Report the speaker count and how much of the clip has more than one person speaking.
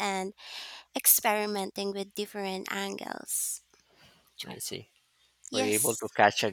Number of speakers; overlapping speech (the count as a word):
two, about 5%